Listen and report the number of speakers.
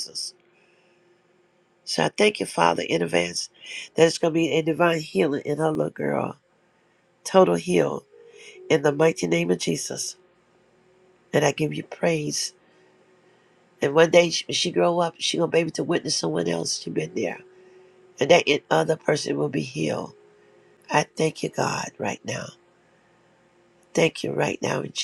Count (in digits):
1